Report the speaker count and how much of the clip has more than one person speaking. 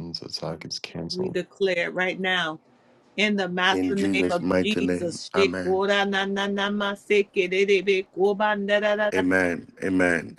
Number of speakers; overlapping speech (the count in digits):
3, about 23%